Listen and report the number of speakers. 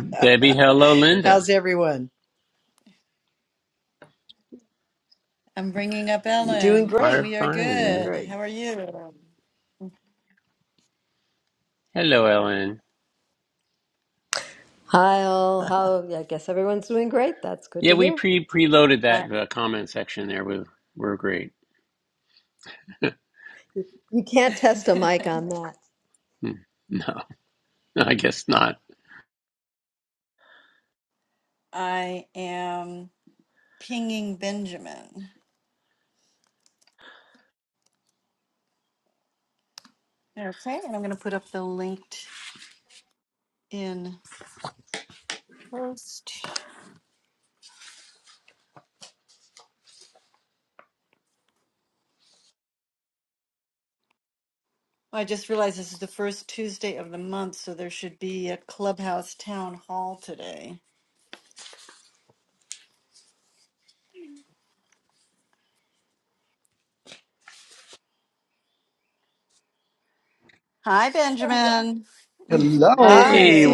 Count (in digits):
5